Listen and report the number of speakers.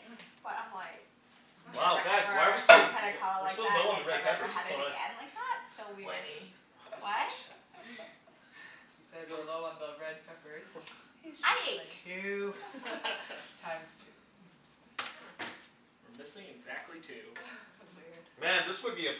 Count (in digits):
4